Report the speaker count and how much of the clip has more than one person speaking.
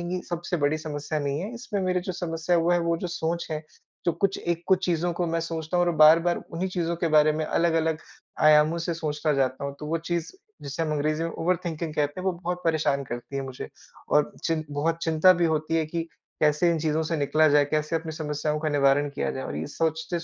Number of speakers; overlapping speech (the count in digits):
1, no overlap